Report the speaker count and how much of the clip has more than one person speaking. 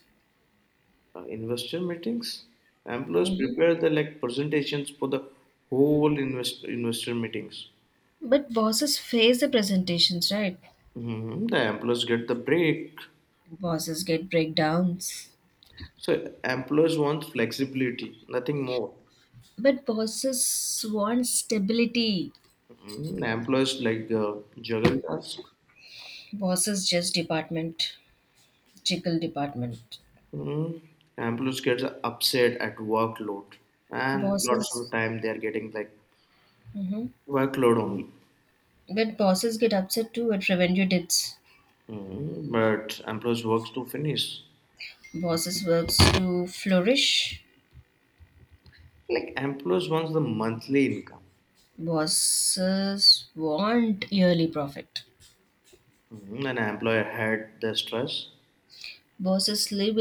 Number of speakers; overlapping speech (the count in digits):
2, about 1%